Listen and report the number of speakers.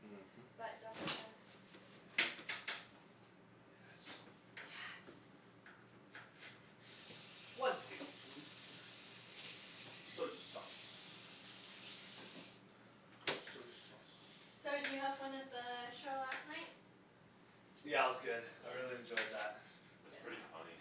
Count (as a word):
three